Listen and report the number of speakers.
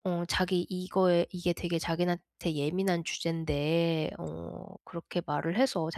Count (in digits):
1